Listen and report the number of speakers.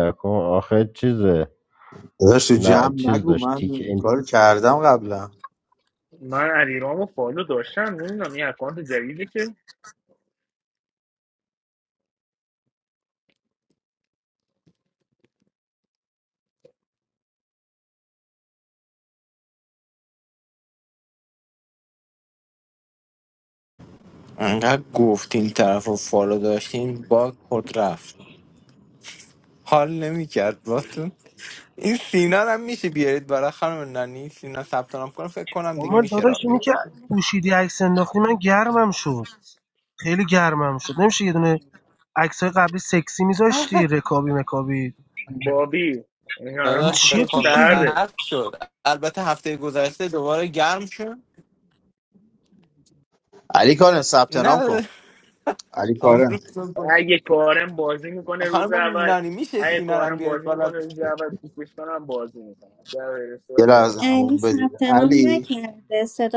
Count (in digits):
6